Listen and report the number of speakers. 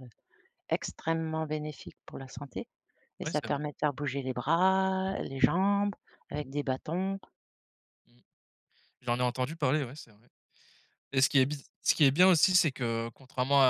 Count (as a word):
two